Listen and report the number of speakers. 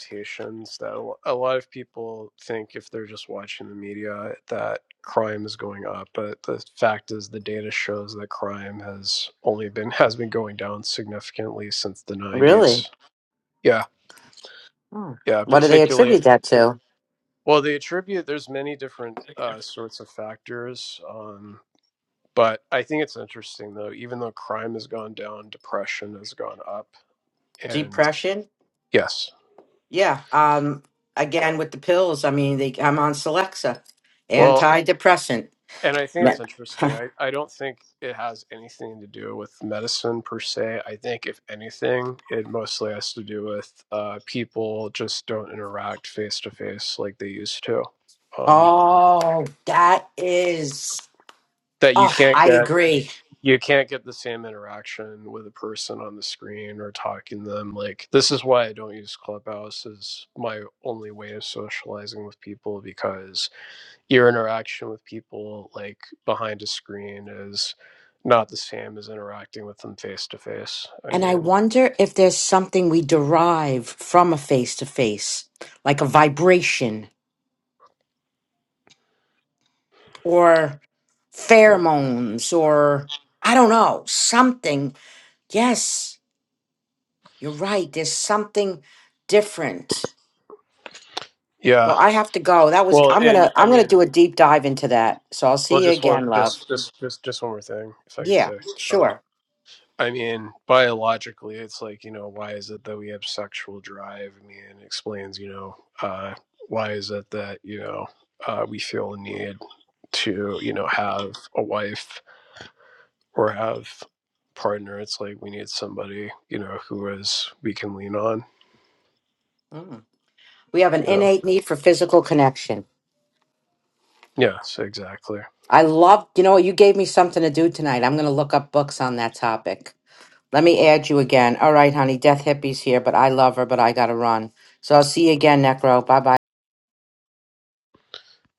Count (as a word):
two